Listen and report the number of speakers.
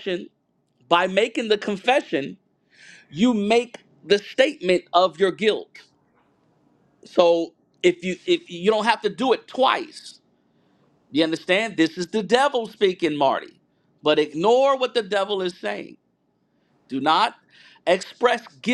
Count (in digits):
1